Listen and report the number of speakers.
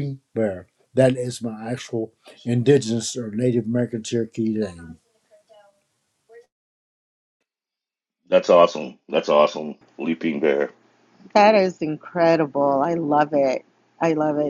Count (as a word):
three